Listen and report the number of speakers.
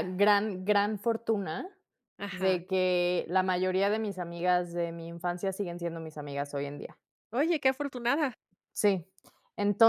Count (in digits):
2